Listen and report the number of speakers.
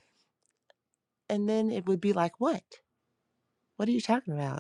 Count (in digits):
1